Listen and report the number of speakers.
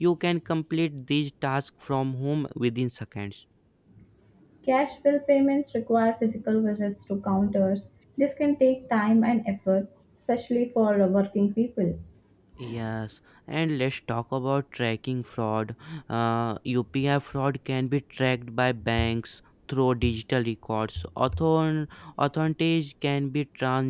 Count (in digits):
2